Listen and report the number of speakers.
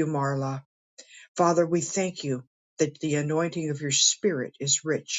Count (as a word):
one